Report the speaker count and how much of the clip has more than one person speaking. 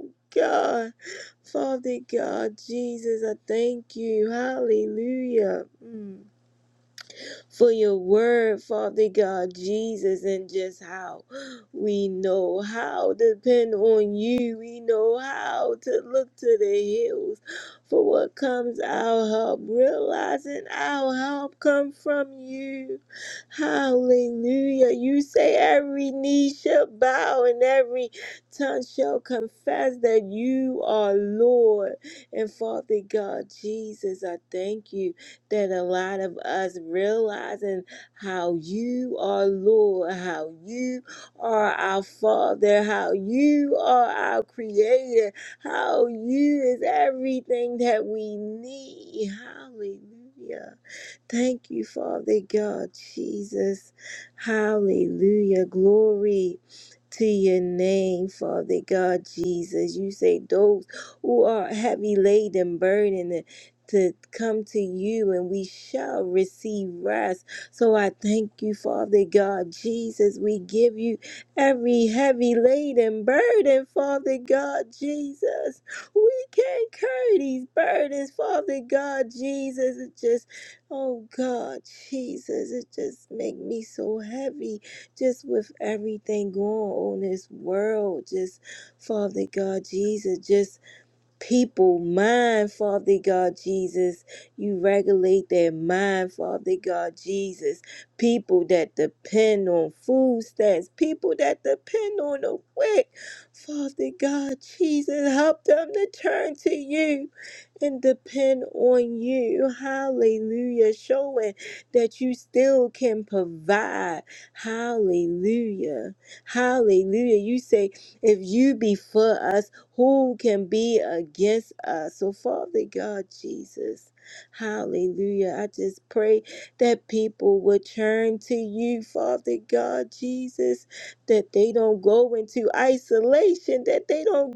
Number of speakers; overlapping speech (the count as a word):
one, no overlap